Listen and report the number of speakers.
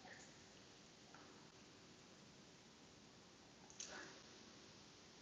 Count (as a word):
zero